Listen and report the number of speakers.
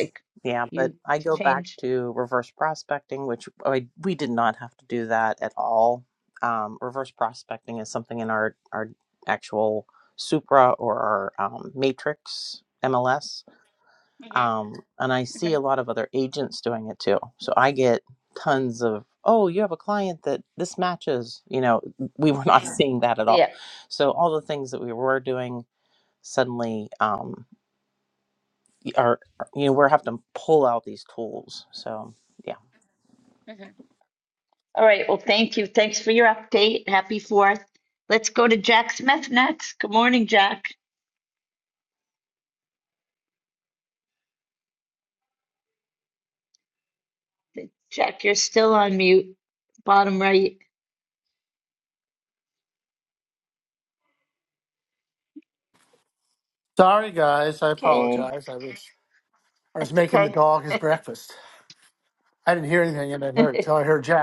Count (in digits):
3